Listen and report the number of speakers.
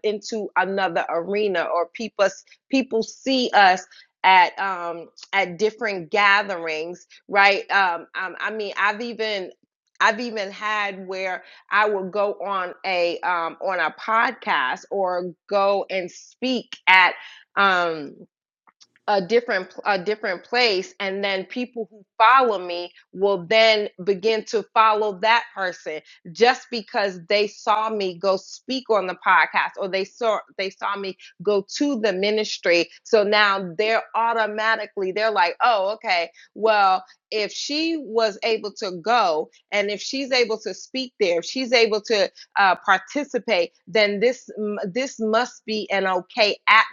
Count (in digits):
1